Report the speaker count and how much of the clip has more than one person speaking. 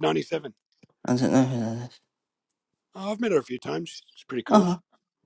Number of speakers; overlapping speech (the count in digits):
2, about 3%